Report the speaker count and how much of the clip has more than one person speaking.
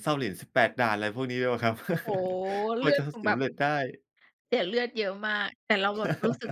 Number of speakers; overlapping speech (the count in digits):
2, about 9%